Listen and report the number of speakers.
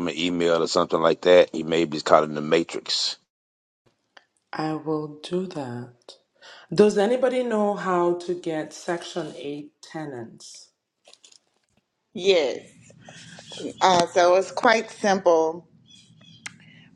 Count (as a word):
three